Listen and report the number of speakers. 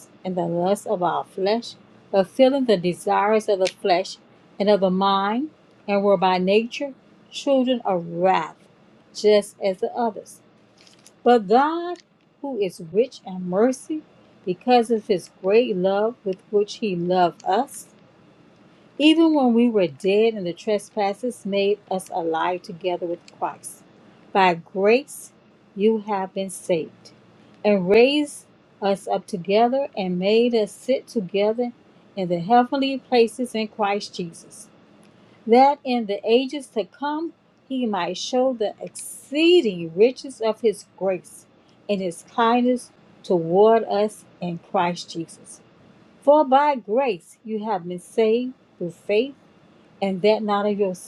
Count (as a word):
one